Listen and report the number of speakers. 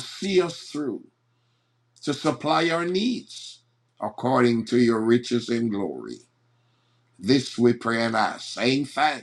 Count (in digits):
1